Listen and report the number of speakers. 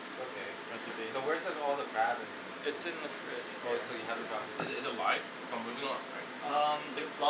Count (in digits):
3